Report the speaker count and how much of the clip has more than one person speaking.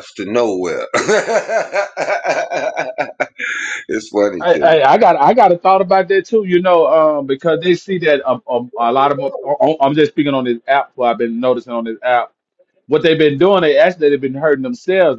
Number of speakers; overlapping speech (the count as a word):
two, about 3%